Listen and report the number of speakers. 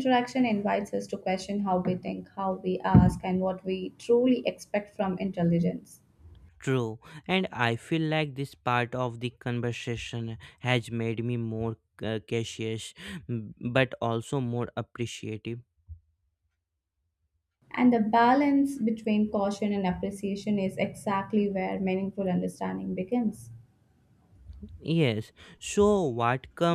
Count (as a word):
two